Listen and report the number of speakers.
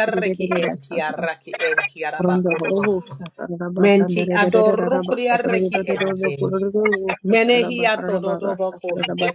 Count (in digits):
2